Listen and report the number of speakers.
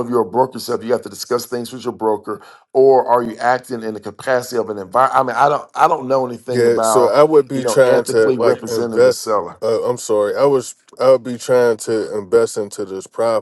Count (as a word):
two